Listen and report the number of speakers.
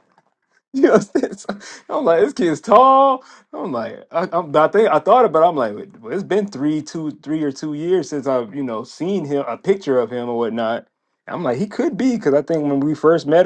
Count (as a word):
one